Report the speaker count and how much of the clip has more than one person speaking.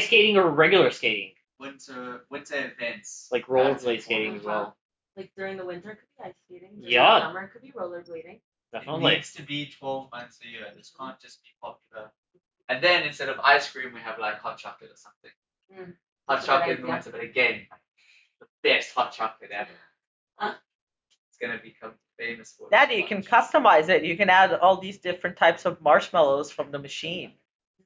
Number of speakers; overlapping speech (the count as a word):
four, about 15%